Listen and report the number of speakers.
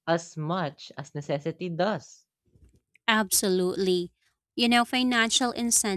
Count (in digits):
2